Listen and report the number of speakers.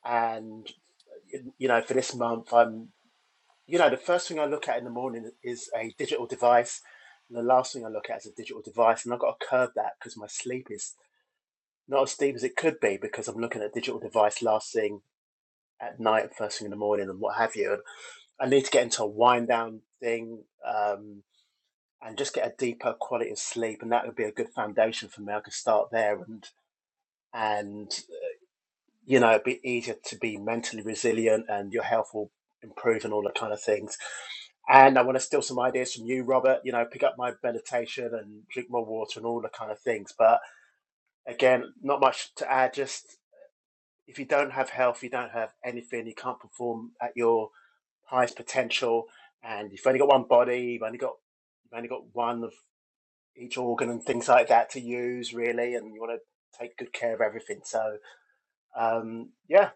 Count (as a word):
one